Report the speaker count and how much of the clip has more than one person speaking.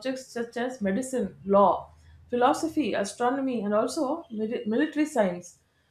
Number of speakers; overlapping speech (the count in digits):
1, no overlap